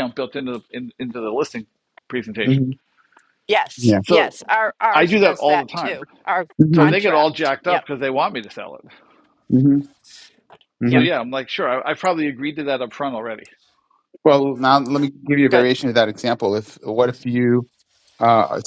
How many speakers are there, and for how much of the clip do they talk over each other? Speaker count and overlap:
three, about 17%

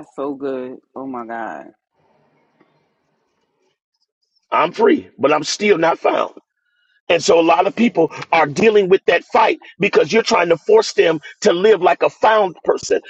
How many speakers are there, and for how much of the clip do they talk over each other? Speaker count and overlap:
two, no overlap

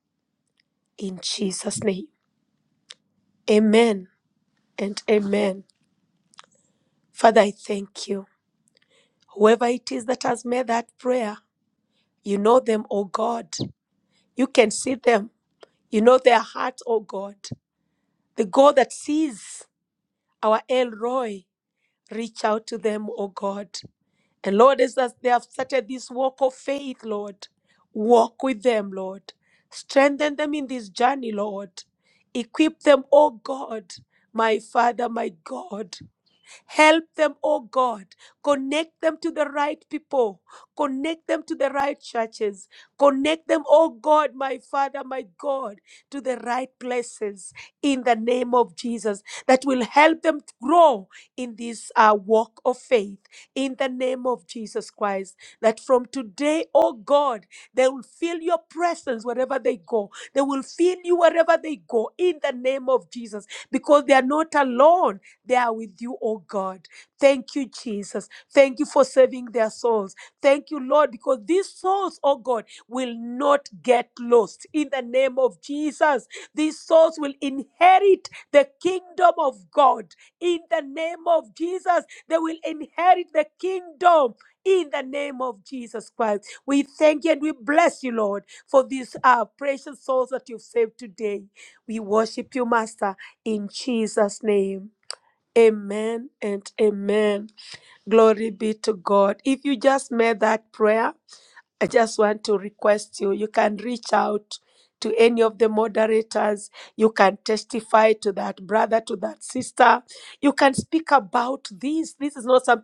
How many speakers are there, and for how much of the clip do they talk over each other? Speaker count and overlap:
one, no overlap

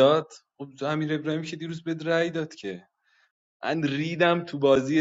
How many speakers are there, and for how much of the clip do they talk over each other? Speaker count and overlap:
one, no overlap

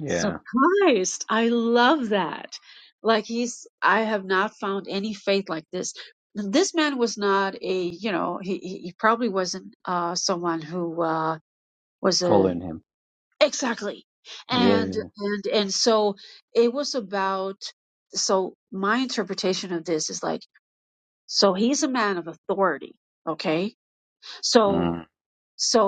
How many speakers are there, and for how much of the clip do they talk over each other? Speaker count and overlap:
two, about 5%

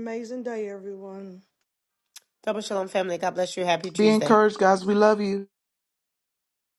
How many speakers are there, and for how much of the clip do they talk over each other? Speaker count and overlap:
three, about 6%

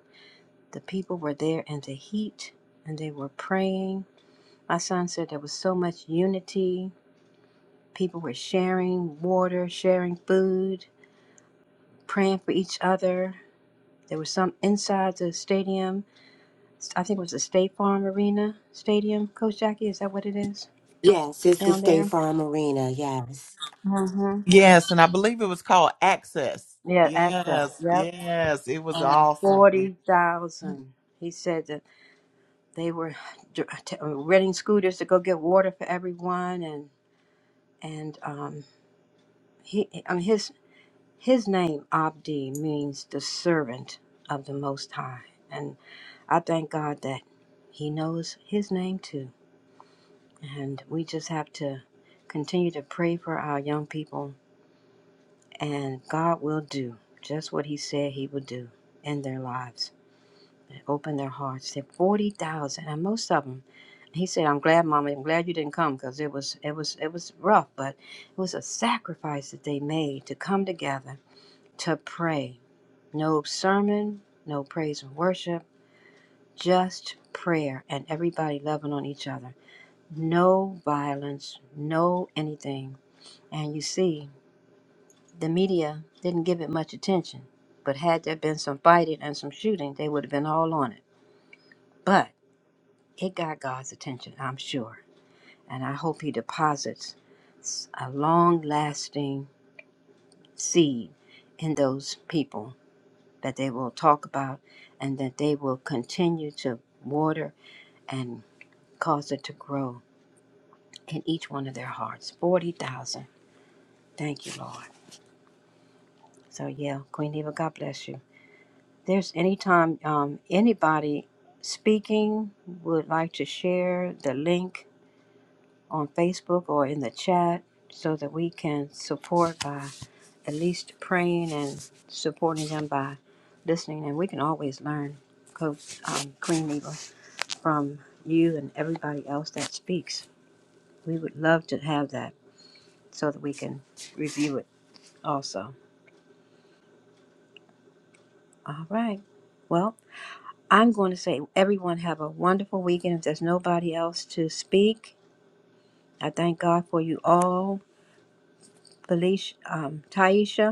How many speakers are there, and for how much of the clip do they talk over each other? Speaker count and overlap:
three, about 1%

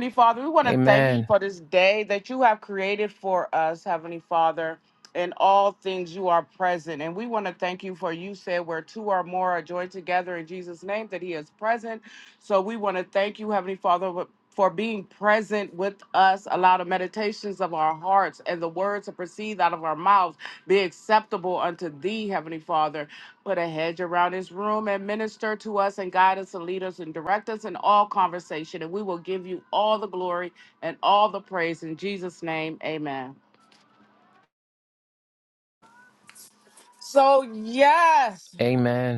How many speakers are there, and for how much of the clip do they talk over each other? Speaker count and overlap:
two, about 2%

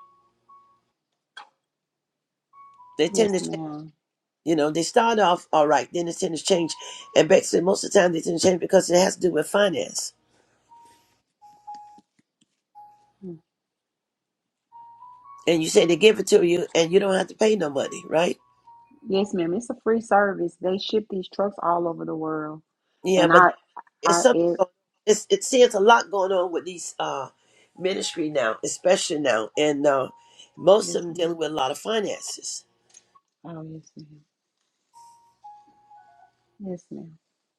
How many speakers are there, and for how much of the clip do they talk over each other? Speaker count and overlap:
two, about 5%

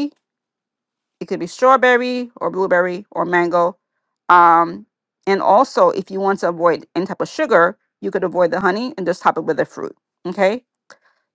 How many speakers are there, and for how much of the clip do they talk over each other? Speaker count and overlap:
one, no overlap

